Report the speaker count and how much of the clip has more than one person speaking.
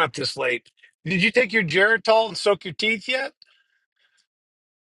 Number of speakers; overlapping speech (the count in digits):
1, no overlap